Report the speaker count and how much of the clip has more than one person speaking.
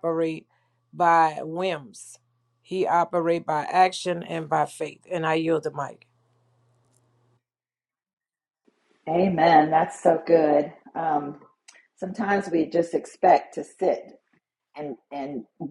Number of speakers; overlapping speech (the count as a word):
two, no overlap